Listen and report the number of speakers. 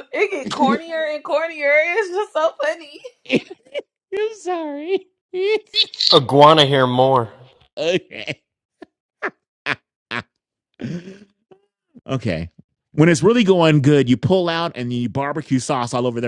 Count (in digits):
3